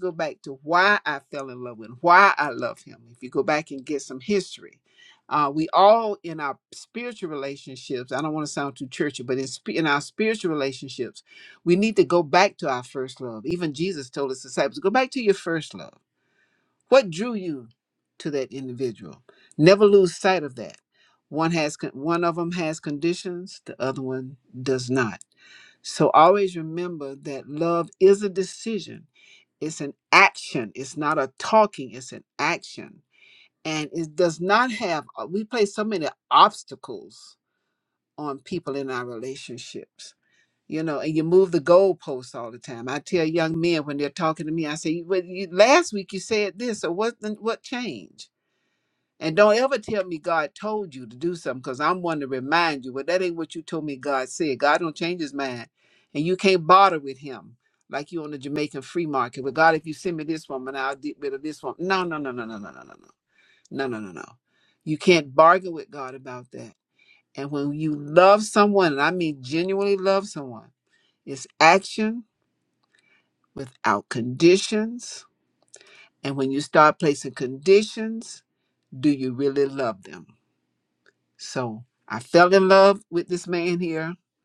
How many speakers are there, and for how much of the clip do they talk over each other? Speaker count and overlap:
1, no overlap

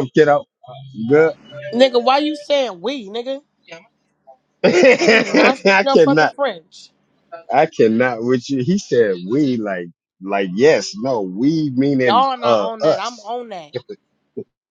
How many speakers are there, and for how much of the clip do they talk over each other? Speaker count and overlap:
2, about 15%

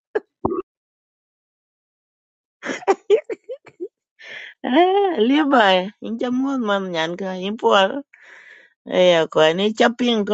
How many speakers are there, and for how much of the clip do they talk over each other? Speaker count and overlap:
1, no overlap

